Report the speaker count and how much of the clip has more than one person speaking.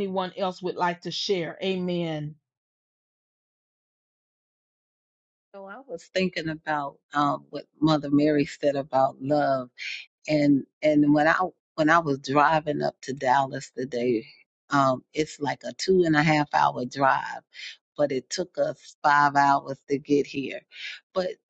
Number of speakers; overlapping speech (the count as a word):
two, no overlap